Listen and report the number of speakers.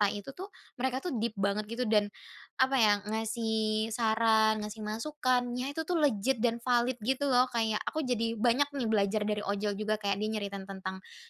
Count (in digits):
1